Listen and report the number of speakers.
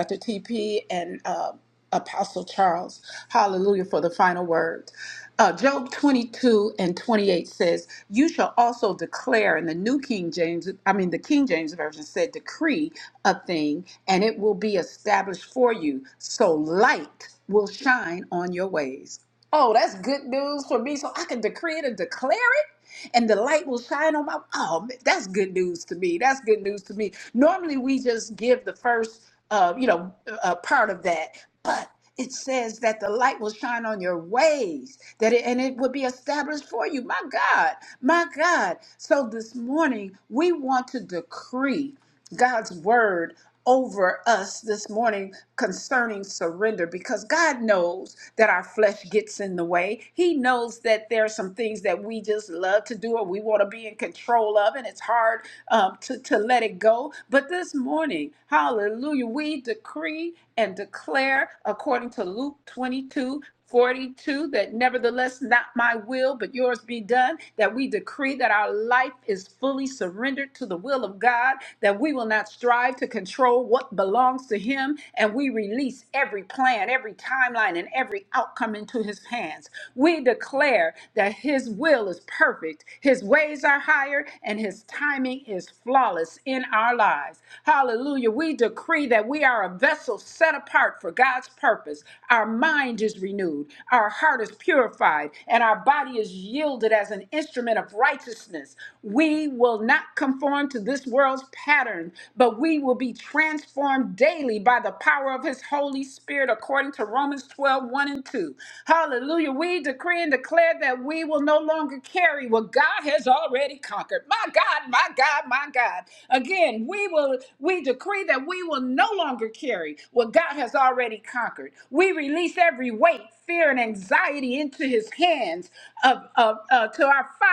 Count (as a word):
one